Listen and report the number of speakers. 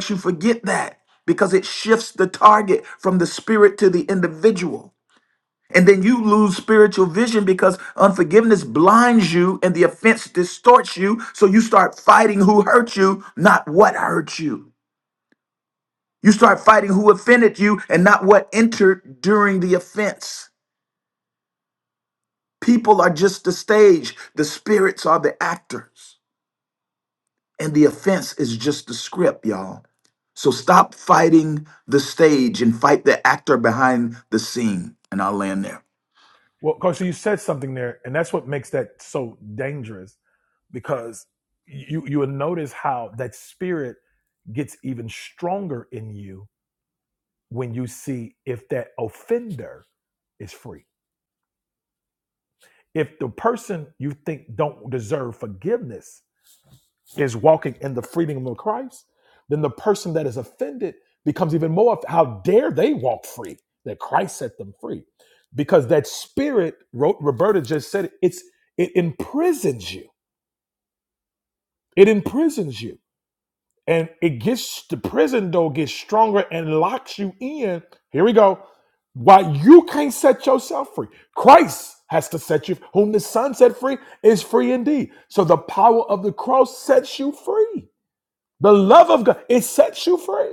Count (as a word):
two